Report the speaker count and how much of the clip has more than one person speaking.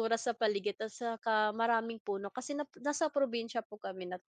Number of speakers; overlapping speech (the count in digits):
1, no overlap